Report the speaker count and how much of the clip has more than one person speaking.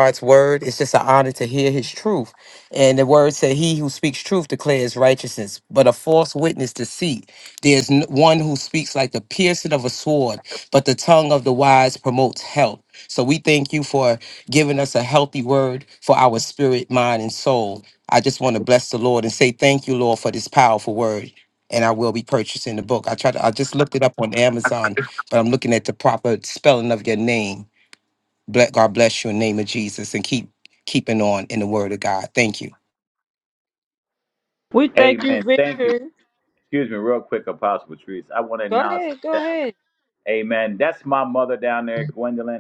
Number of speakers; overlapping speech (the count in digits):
3, about 4%